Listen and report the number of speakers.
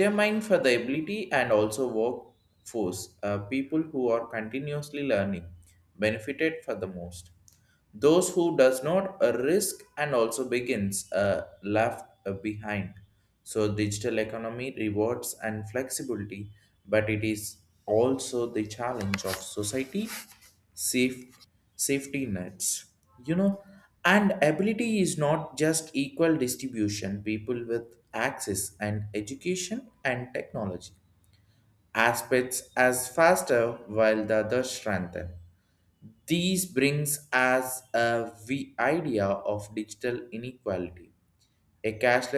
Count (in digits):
1